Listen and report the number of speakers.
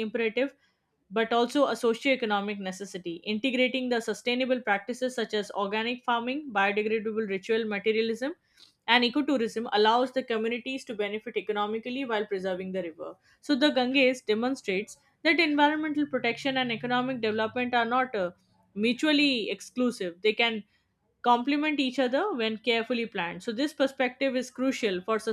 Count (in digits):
1